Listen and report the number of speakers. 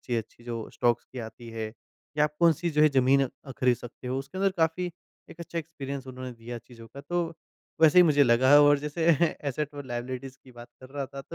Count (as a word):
one